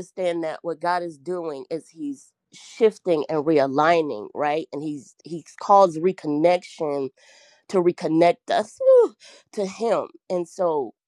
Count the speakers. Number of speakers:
1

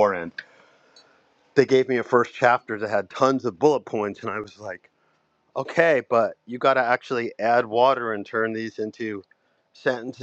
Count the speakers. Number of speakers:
1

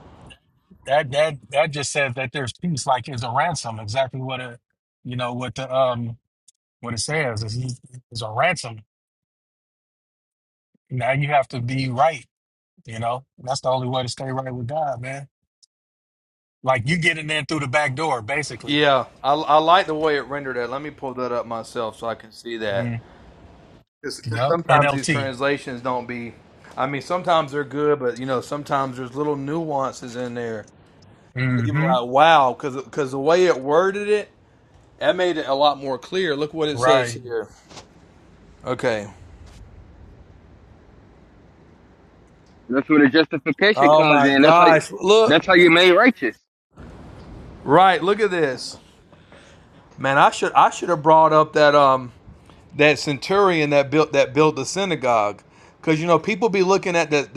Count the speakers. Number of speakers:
3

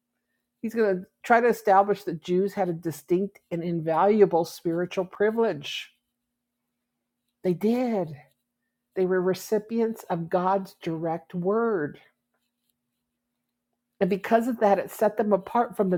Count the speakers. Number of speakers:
1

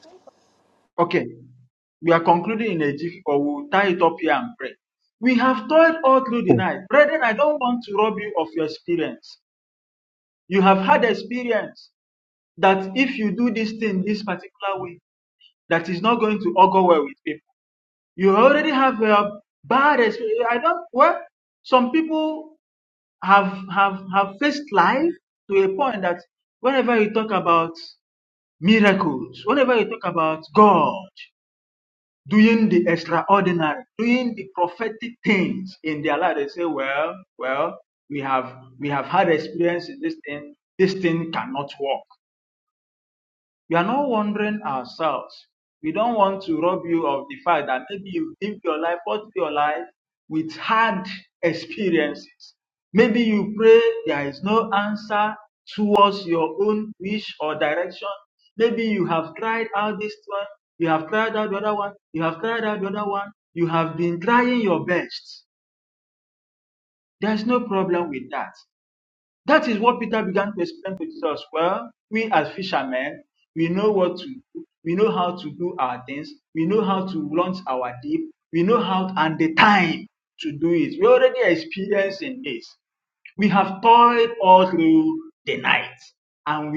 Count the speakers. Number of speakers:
1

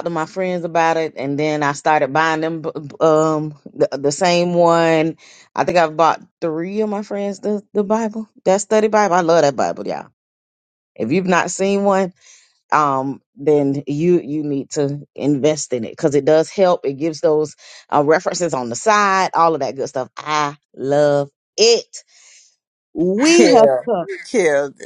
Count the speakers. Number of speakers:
2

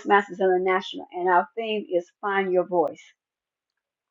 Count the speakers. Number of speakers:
1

